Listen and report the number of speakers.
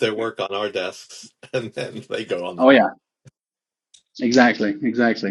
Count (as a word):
two